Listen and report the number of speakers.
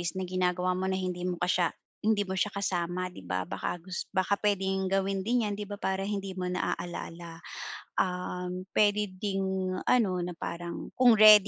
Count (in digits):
1